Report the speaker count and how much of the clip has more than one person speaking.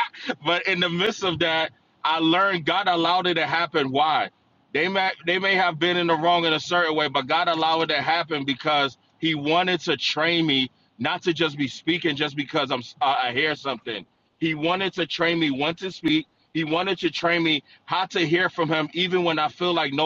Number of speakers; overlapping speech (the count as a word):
one, no overlap